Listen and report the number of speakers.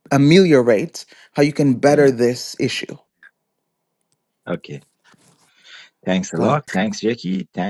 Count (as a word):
two